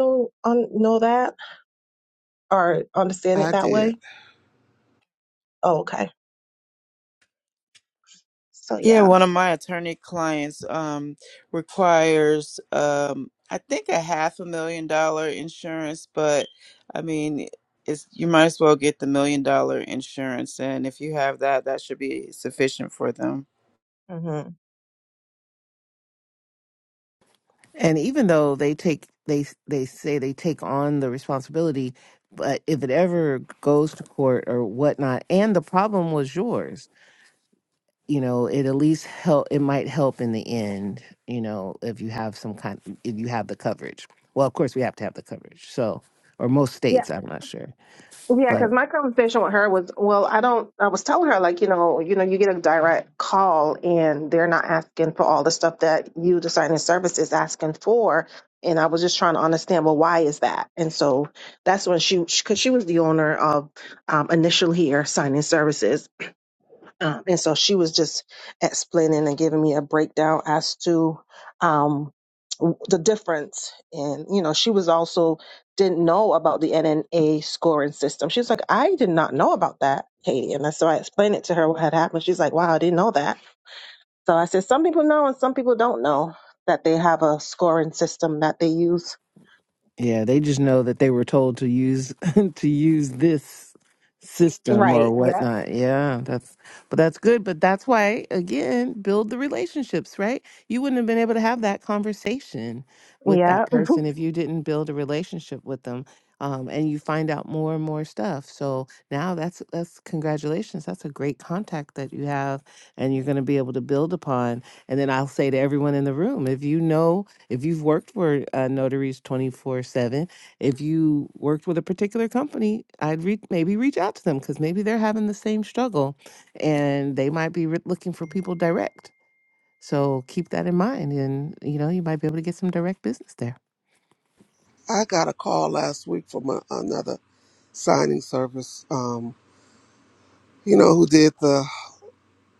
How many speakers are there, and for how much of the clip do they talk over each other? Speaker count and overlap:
4, about 2%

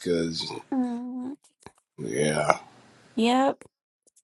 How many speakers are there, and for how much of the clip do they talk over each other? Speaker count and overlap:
2, no overlap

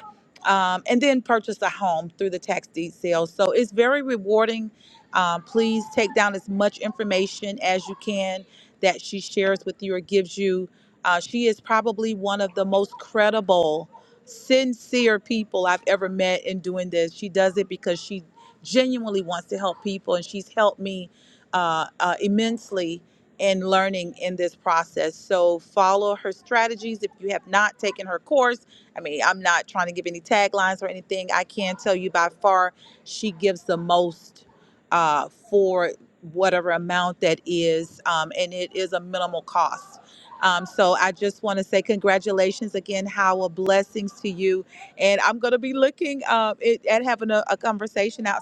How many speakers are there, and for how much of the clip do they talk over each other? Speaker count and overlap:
1, no overlap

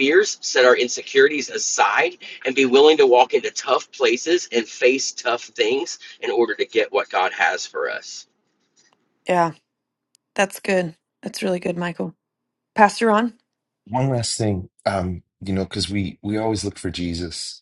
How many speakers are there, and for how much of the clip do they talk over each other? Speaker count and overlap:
3, no overlap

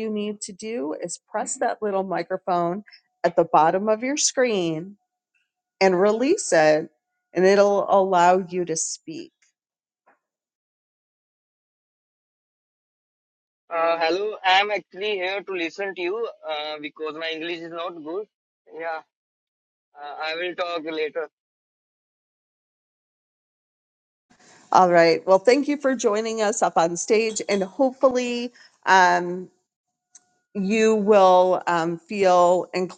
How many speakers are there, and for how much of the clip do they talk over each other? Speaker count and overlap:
2, no overlap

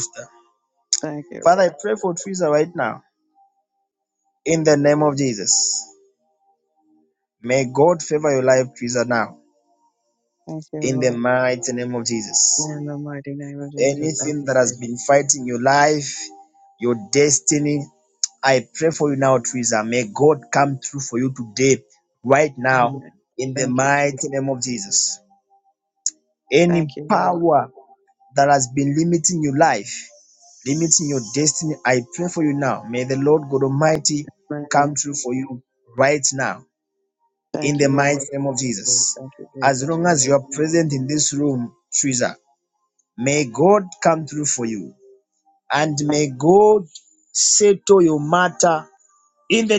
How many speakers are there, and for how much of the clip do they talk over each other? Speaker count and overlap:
2, about 12%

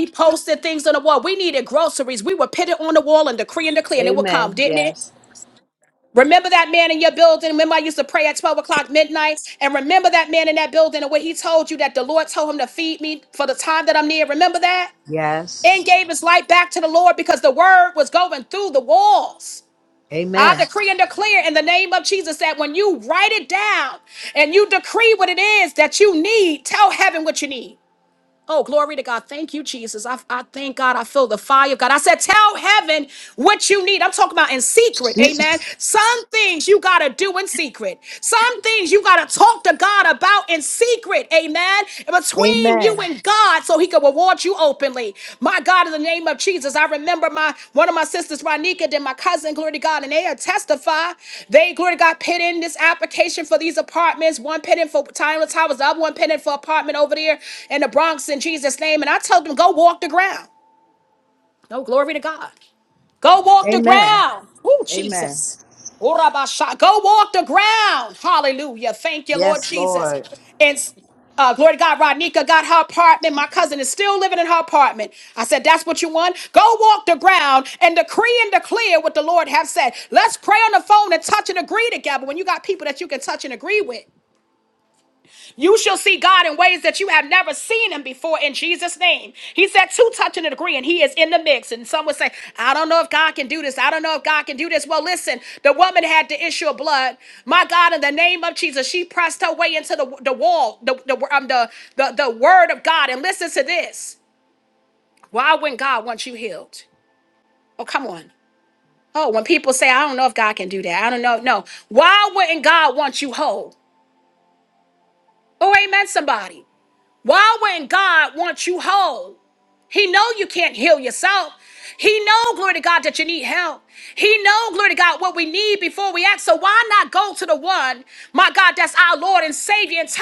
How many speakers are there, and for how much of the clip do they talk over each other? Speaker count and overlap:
2, about 3%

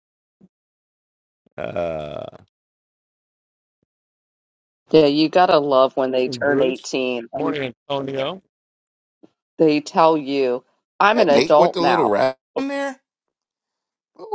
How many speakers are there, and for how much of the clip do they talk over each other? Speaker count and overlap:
3, about 12%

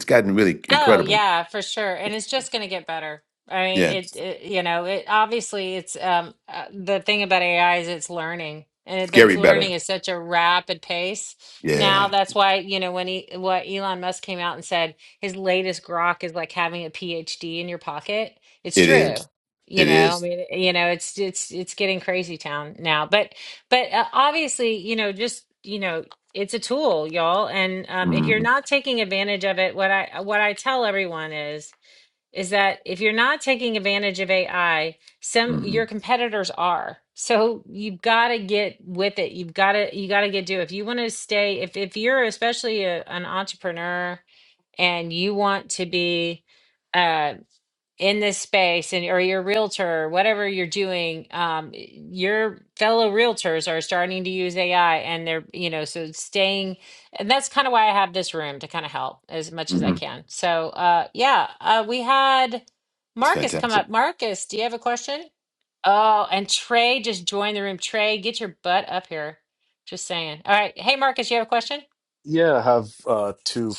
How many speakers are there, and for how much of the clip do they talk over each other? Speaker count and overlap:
3, about 6%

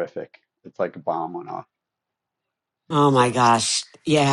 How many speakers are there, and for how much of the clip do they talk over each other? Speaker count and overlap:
2, about 3%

